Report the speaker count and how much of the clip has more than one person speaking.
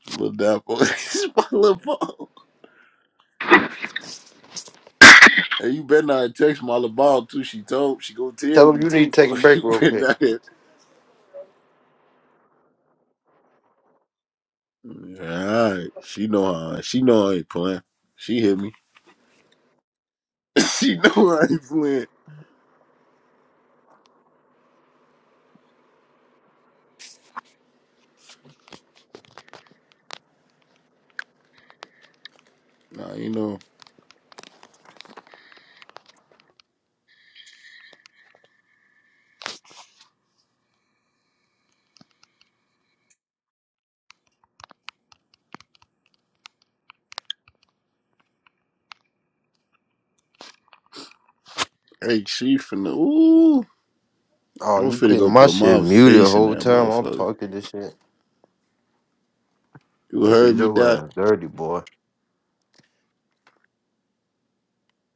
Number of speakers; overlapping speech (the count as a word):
two, about 7%